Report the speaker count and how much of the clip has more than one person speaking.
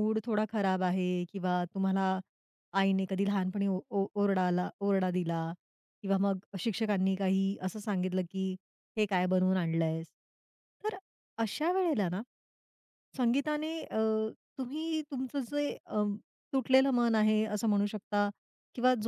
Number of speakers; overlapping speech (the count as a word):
one, no overlap